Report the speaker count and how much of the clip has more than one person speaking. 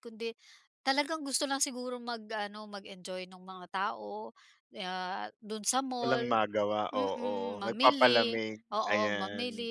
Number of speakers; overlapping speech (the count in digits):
2, about 27%